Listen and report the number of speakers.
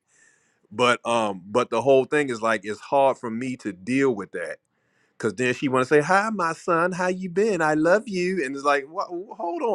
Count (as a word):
one